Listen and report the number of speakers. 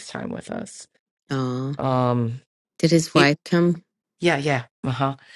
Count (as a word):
two